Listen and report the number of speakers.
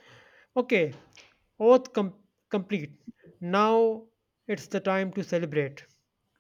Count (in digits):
1